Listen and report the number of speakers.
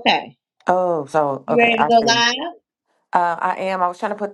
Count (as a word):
two